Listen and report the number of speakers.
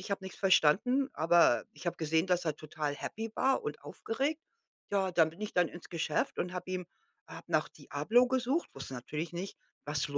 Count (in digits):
1